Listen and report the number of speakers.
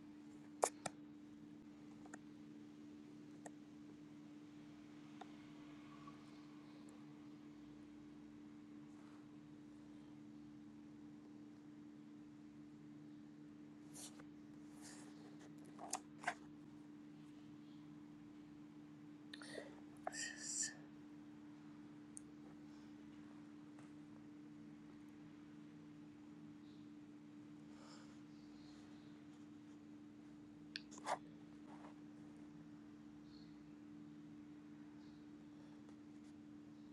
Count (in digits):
0